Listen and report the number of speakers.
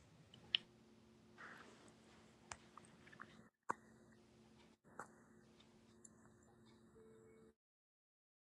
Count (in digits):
0